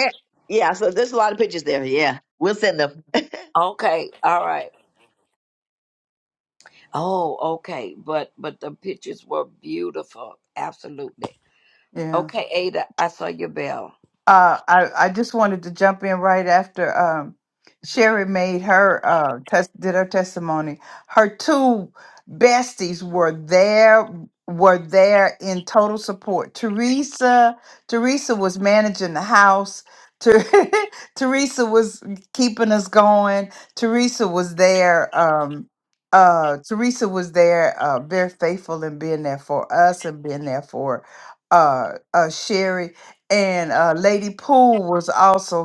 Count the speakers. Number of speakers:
3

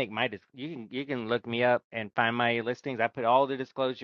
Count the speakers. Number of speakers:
1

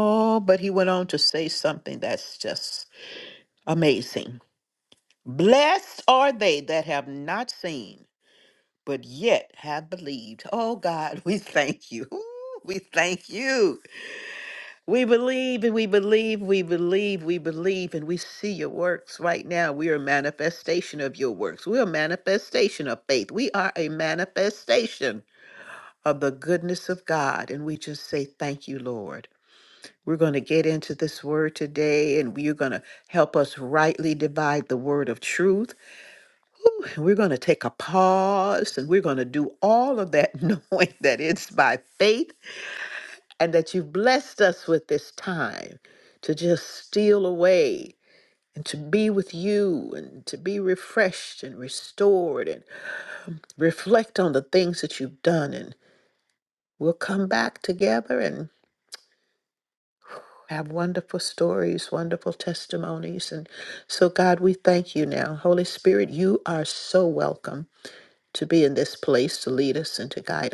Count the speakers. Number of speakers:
1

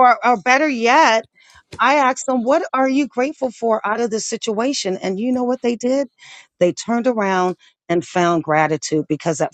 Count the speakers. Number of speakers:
1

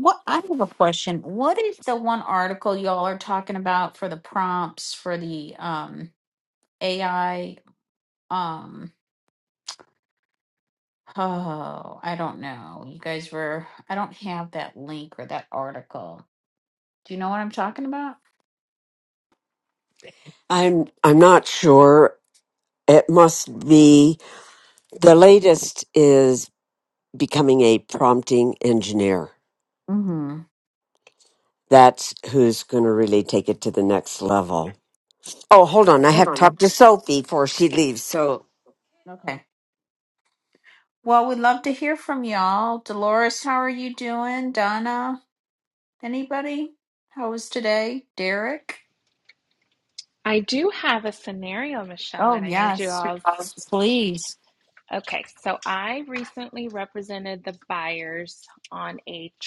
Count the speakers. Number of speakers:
3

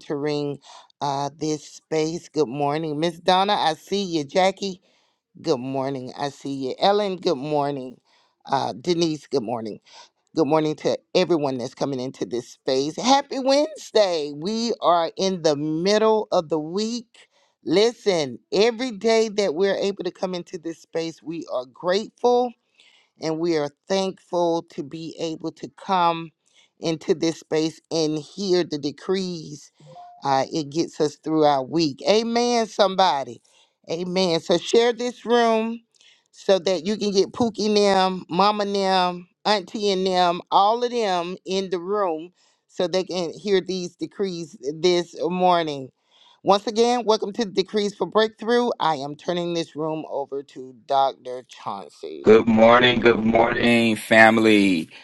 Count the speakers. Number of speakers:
2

